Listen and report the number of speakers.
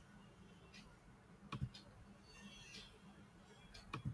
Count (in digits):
0